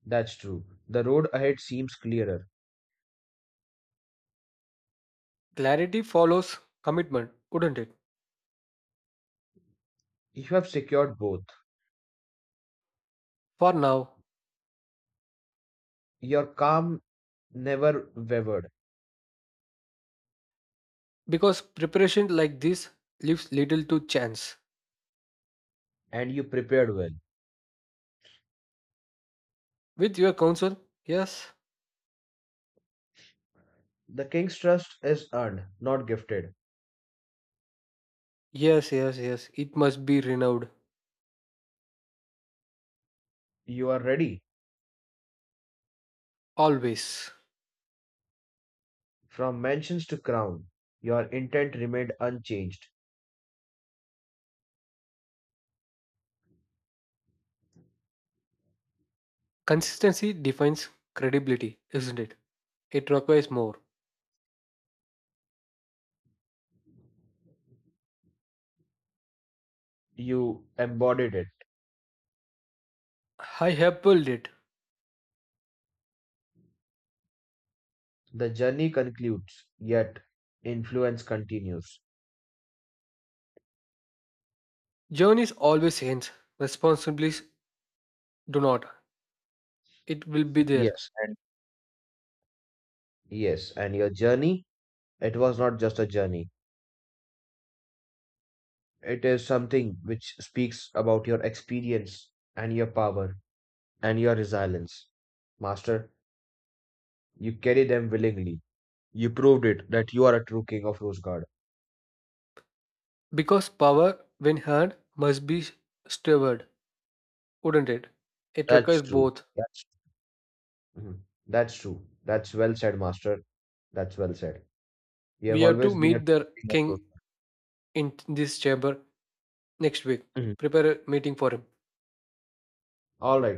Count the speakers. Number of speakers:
2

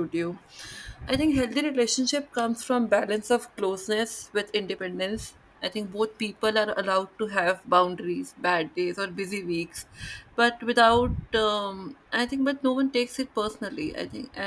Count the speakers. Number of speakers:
1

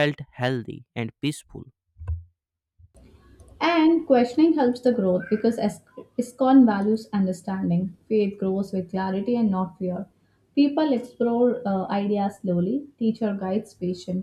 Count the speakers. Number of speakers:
2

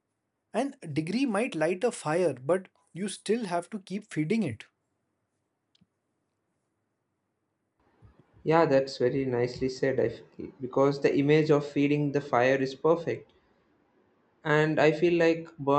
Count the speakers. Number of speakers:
2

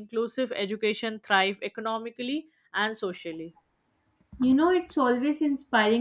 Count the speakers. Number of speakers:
2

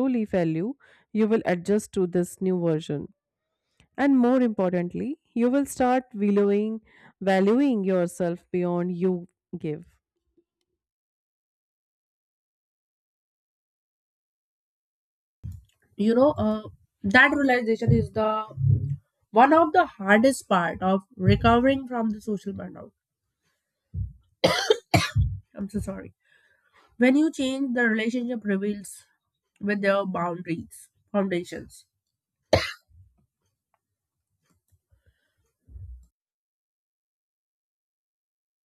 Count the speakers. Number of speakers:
2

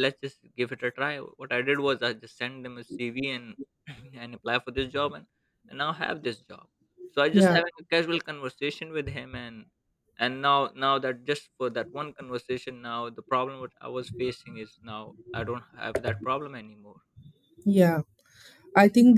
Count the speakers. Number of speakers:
2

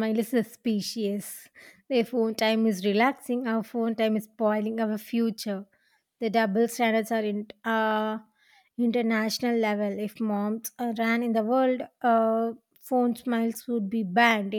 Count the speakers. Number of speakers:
1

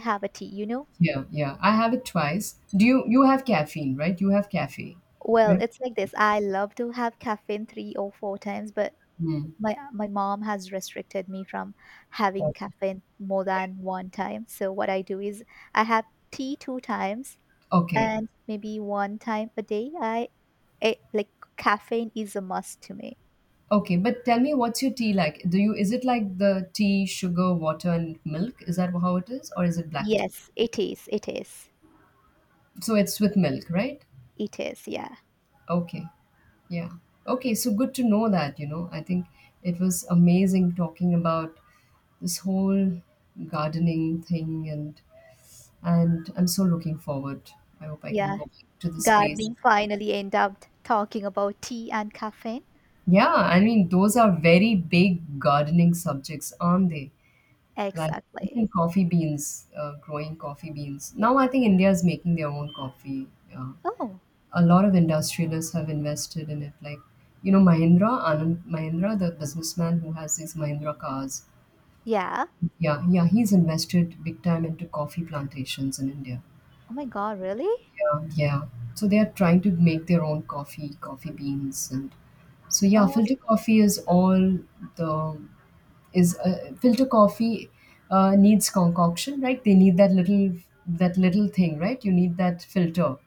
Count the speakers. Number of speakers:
2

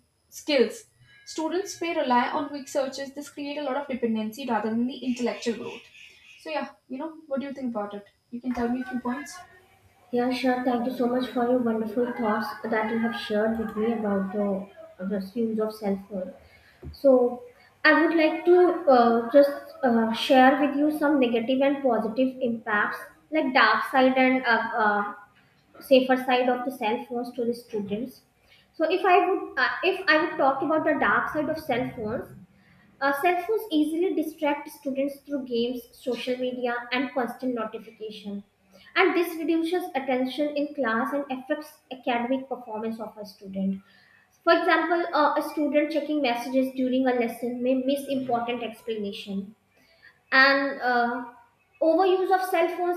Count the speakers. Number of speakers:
2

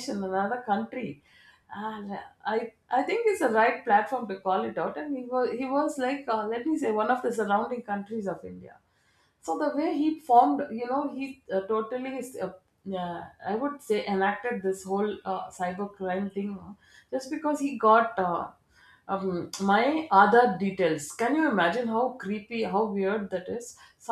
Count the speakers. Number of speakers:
1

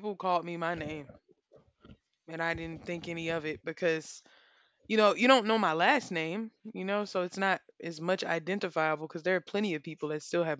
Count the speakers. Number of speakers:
1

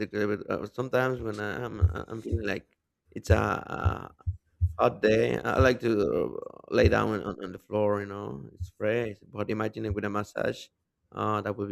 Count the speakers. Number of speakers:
1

